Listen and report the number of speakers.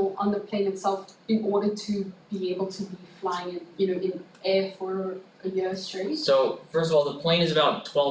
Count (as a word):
two